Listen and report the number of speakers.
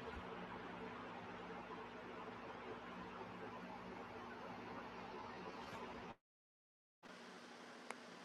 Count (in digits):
0